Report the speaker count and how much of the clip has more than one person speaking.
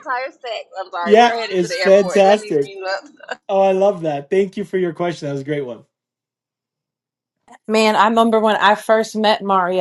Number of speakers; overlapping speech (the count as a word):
three, about 17%